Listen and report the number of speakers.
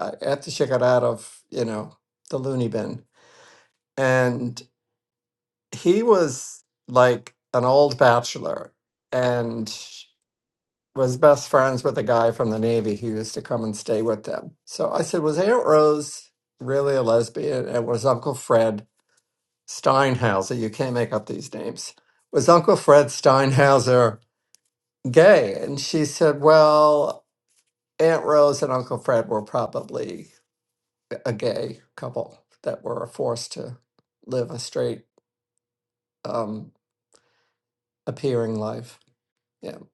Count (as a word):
one